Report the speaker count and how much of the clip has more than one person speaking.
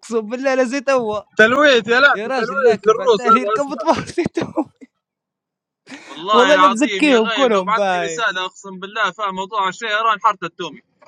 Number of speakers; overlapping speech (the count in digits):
3, about 33%